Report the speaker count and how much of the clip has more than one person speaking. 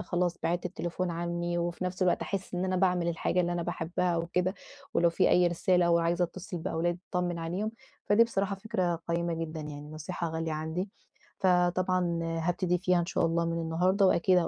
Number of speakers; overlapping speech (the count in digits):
1, no overlap